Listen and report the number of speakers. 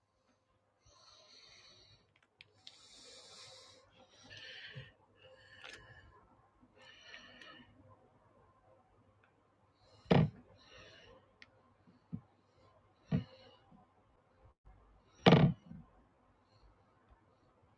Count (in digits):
0